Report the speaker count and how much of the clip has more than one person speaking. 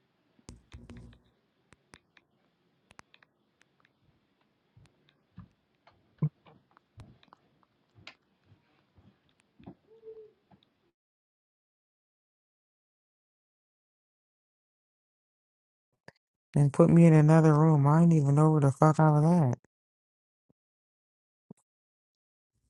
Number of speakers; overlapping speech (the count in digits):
1, no overlap